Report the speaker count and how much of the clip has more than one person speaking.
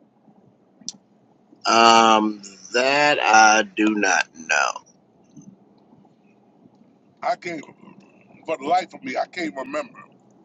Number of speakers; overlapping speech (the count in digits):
2, no overlap